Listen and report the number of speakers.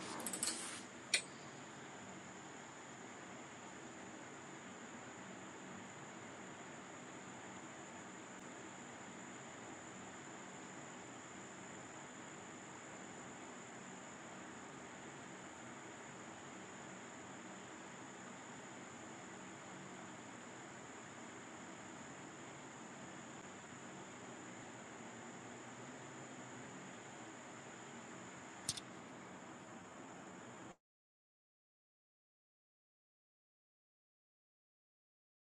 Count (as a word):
zero